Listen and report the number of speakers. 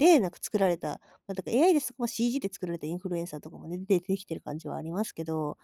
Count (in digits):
1